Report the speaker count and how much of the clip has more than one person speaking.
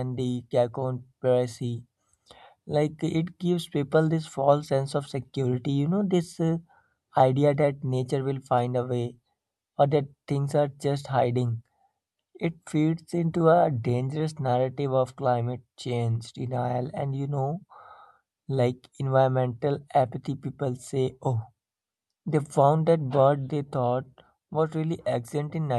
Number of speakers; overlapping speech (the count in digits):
1, no overlap